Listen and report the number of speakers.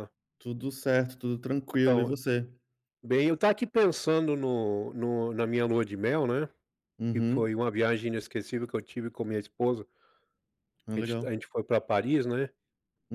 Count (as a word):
two